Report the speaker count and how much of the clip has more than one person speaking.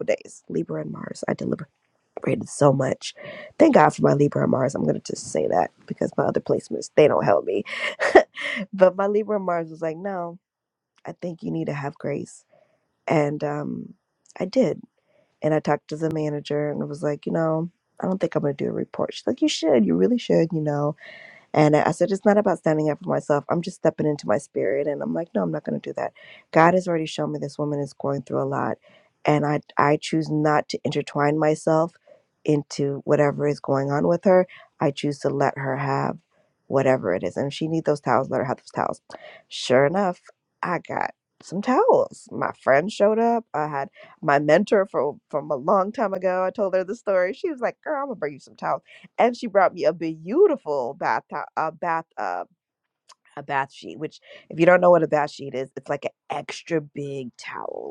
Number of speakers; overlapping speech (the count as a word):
one, no overlap